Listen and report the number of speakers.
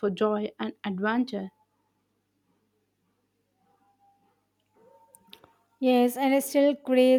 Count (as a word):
two